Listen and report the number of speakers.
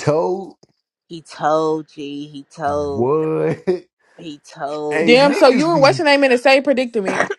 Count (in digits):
3